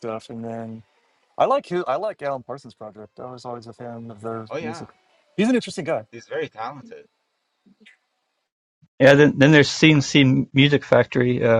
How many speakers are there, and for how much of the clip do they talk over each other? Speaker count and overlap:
3, about 3%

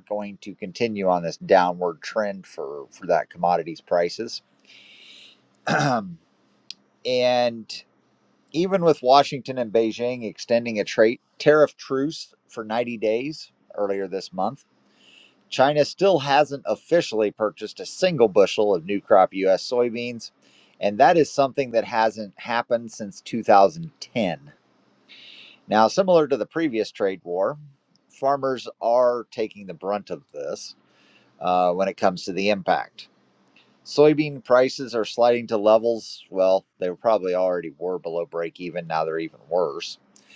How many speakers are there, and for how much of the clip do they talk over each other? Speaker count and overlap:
1, no overlap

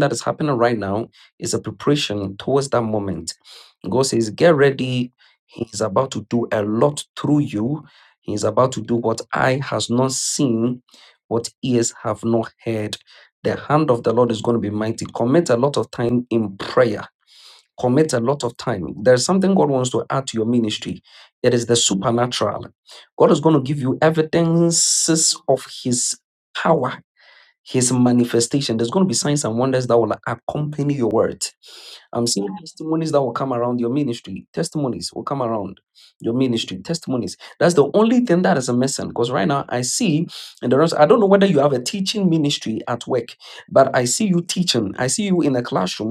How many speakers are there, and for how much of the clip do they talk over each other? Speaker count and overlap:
1, no overlap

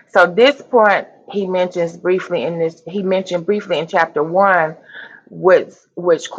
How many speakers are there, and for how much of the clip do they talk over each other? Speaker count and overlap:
1, no overlap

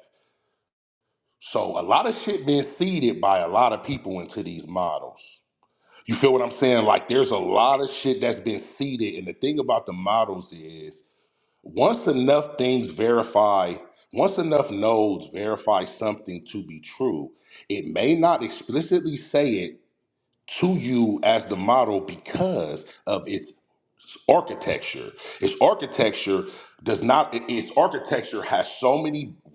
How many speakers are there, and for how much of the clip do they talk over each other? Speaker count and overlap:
1, no overlap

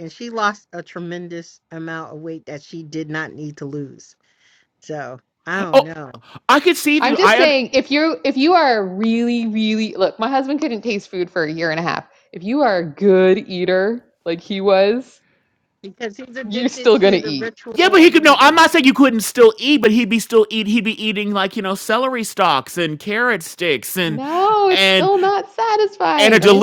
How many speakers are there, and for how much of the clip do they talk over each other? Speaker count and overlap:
3, about 13%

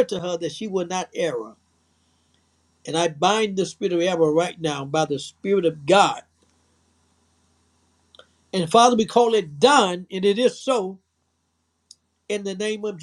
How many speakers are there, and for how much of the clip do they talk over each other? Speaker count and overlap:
1, no overlap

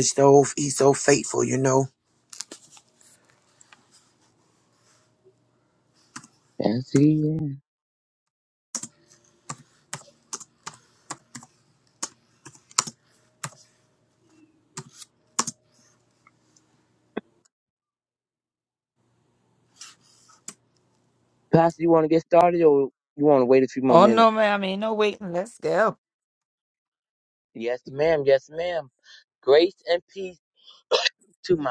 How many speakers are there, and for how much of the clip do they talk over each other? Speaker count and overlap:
3, about 1%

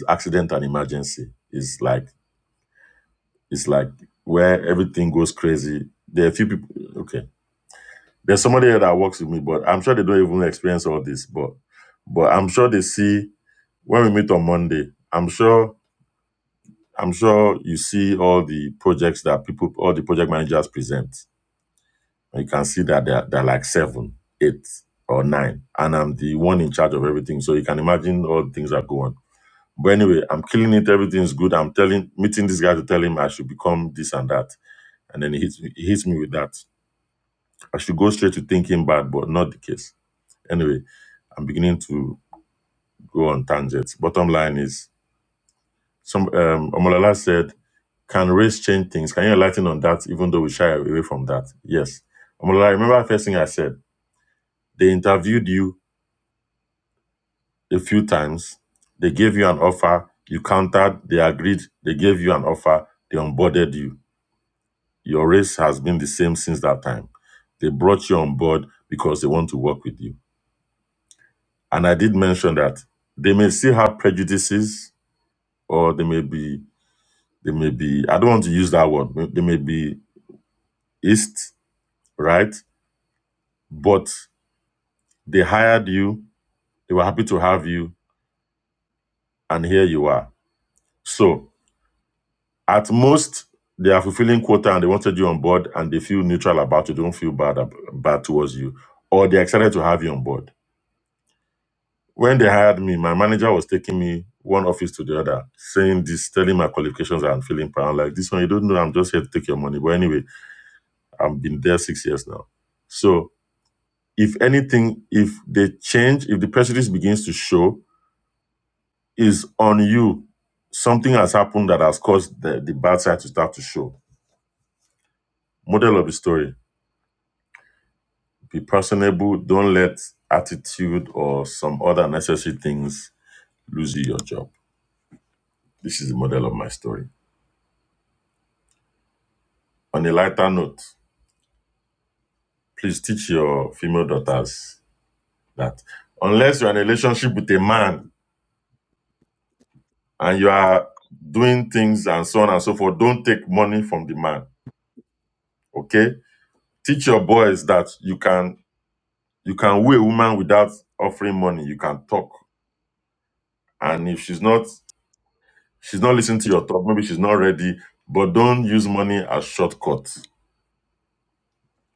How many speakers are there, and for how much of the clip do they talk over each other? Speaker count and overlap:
1, no overlap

